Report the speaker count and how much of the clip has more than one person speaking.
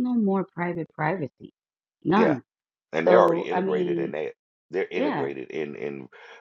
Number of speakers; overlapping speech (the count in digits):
2, about 25%